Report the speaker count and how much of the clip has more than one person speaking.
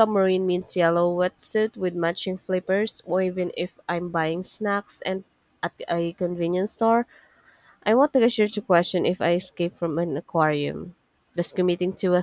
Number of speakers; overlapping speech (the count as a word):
one, no overlap